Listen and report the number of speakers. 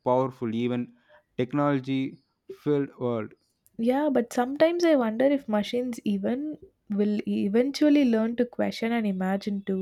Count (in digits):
2